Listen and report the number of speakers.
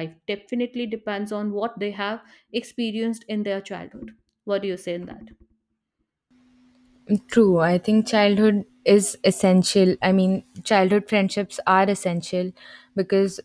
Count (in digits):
2